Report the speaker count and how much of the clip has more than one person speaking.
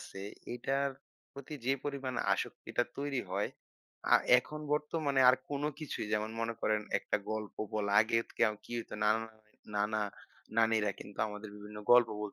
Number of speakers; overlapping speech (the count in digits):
1, no overlap